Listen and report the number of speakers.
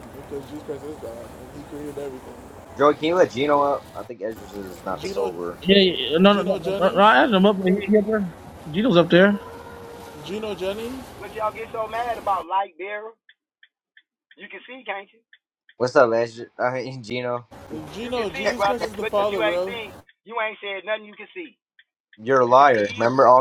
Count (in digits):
4